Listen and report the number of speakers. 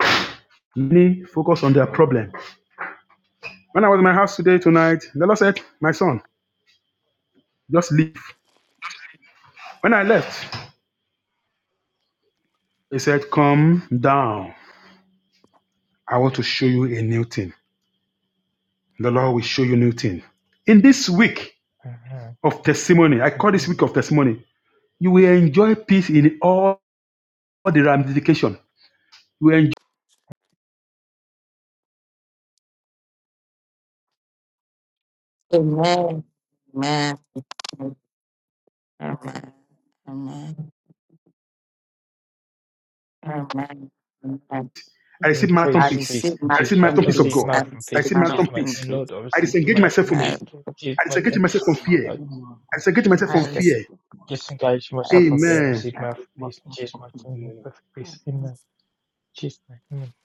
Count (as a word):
four